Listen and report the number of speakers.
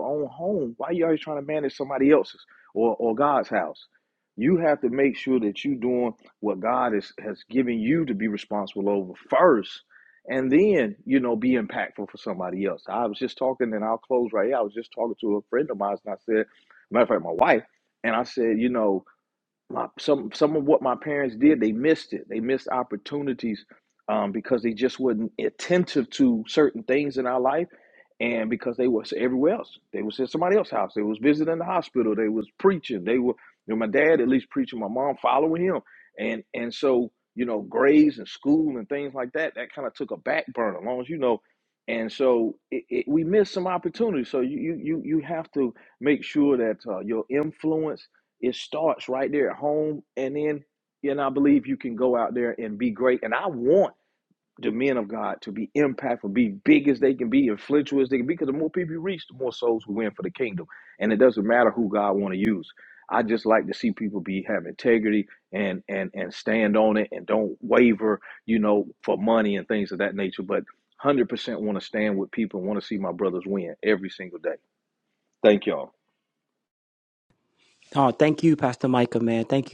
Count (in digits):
2